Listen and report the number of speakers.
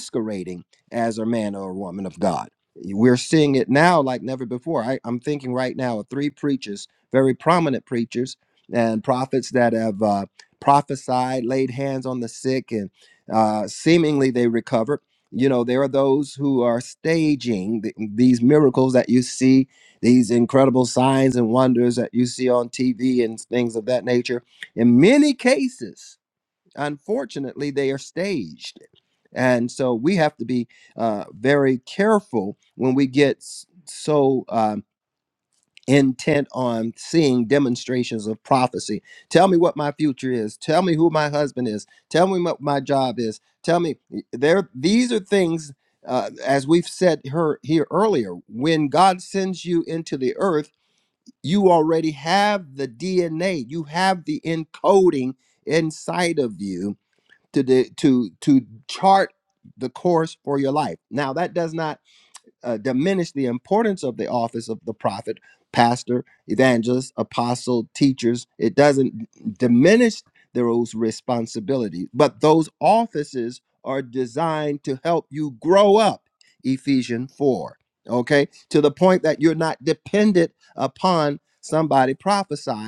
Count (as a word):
one